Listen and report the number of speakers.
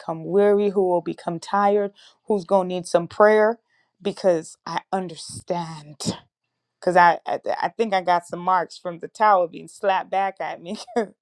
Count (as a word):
one